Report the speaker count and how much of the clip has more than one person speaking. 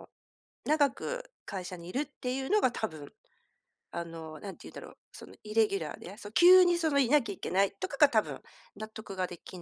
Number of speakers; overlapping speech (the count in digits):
1, no overlap